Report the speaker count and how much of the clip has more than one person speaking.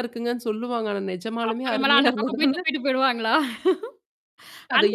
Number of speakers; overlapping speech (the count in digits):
2, about 29%